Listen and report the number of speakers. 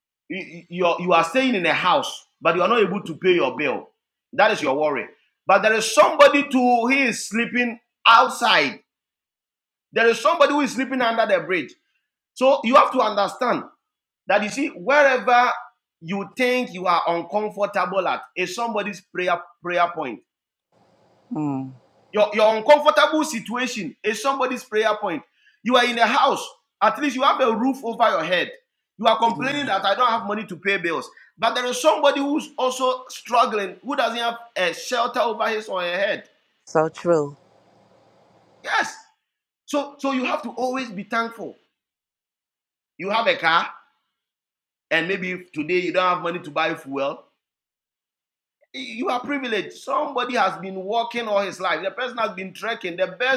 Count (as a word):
two